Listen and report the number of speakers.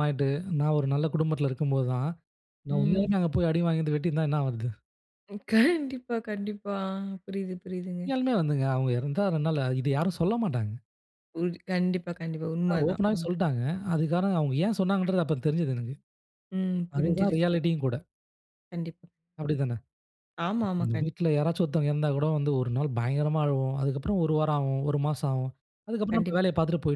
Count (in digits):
2